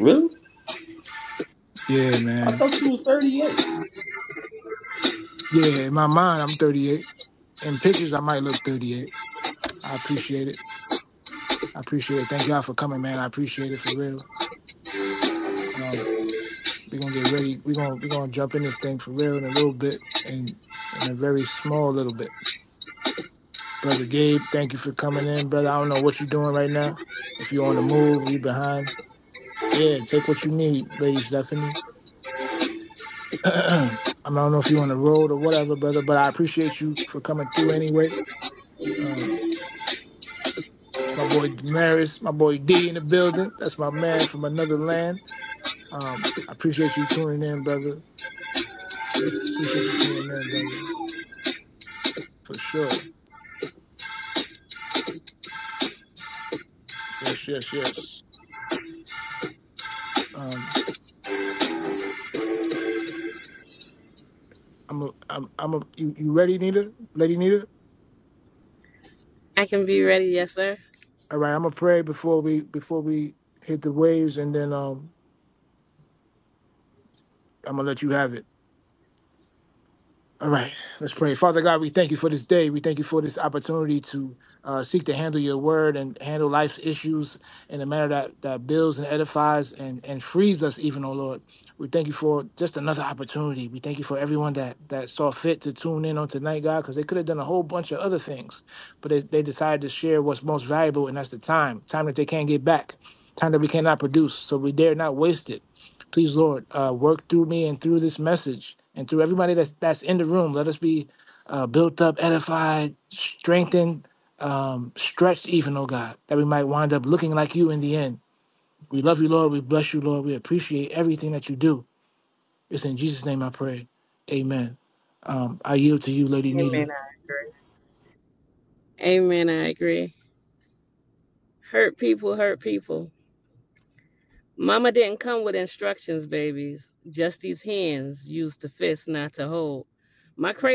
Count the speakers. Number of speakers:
three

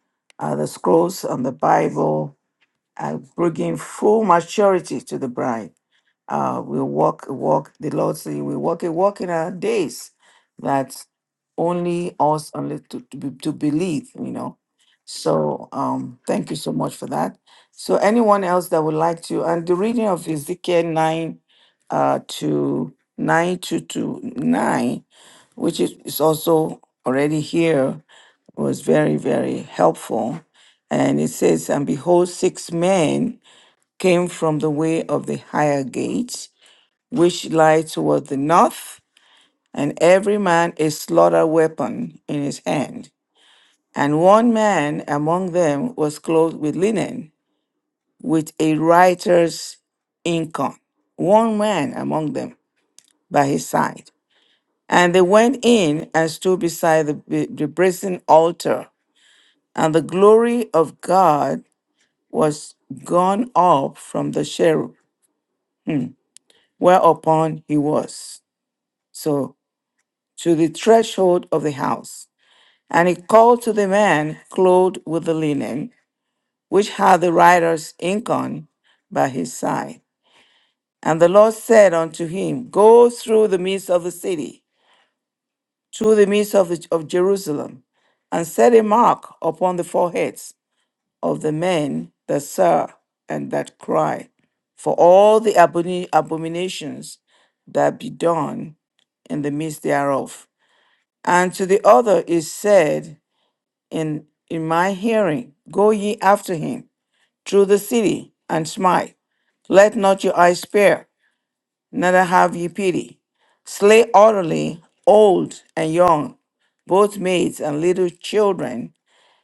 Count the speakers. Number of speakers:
one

